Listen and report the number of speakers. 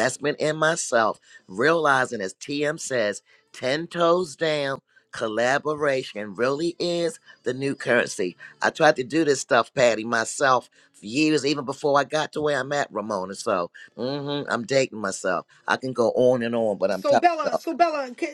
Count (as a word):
two